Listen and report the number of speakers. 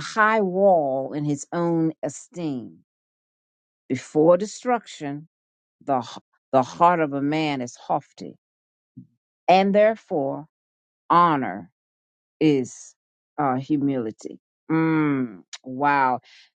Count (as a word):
one